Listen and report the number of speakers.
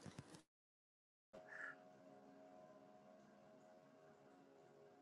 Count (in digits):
0